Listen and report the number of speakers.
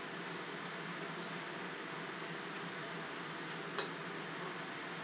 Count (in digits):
0